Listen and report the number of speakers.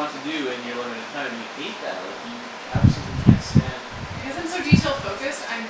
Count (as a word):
two